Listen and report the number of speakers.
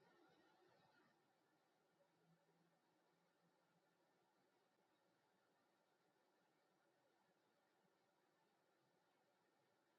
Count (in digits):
0